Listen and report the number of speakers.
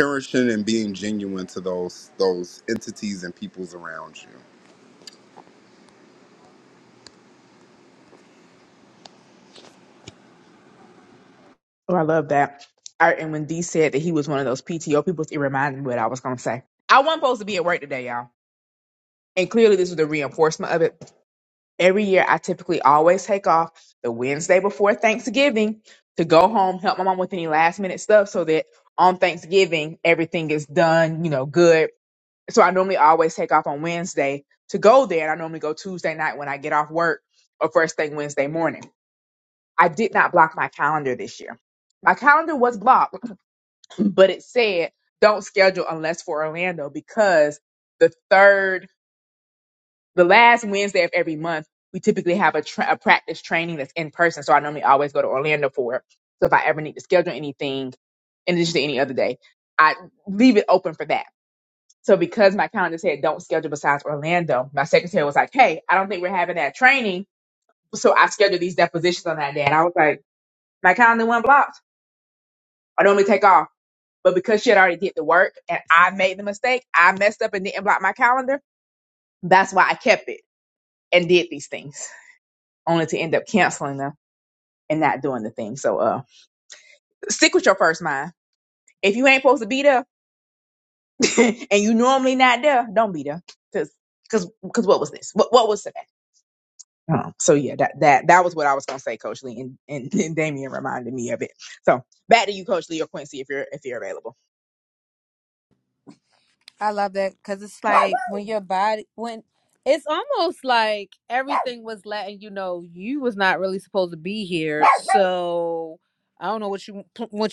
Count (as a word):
three